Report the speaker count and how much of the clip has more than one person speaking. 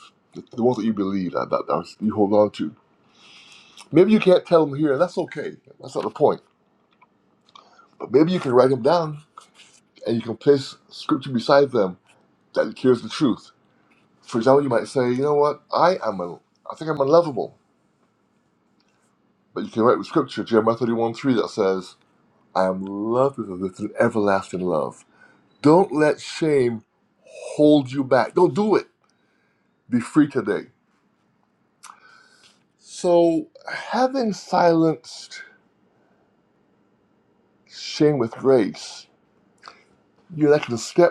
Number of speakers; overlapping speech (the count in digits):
1, no overlap